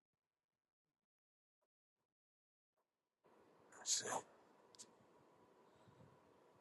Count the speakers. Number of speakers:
zero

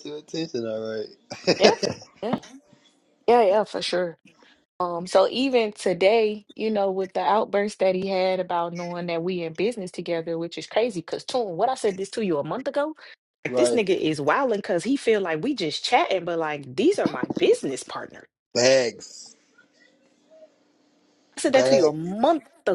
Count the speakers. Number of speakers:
two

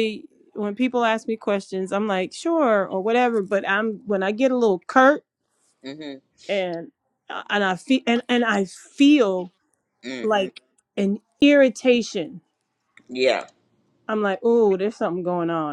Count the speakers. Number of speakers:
two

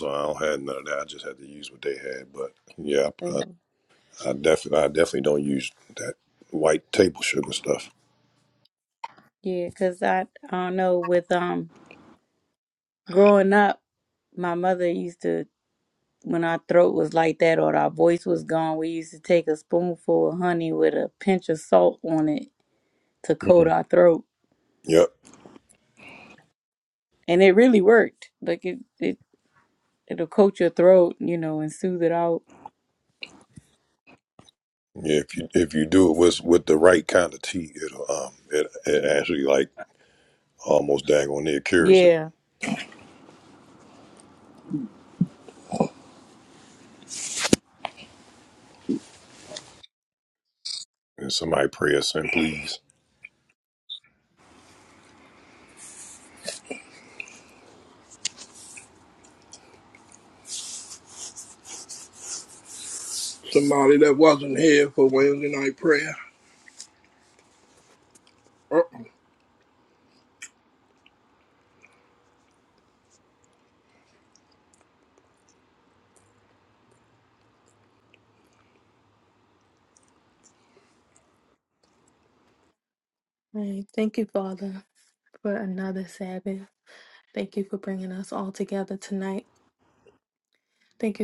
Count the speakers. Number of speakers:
four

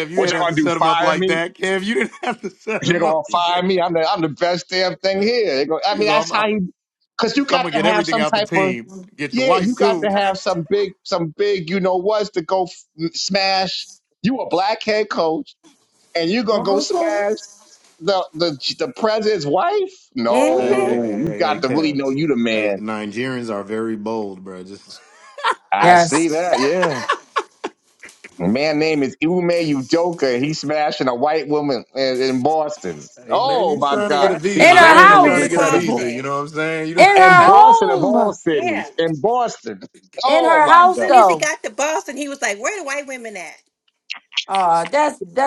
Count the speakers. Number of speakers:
four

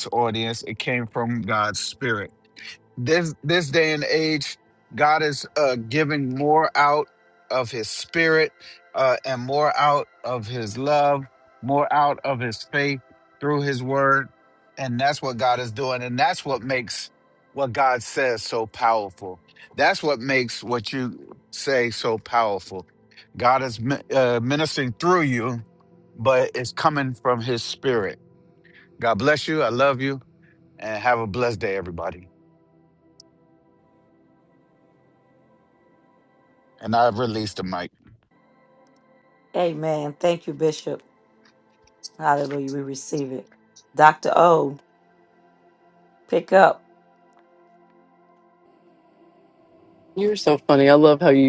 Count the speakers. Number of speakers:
three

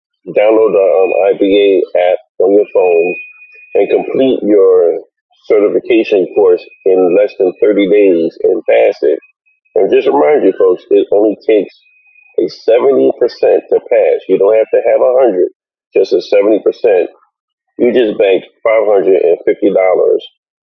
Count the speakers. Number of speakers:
one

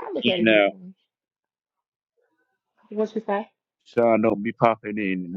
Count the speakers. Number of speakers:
two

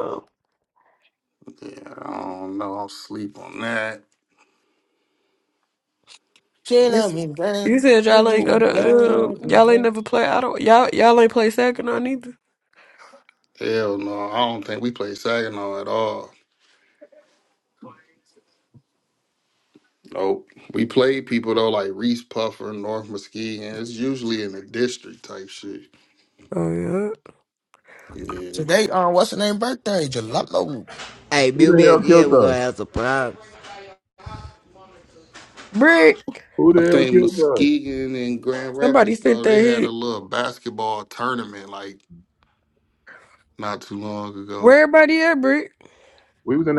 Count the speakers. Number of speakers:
five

